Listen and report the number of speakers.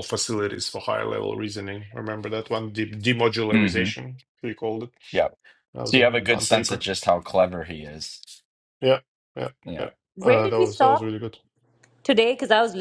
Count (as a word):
three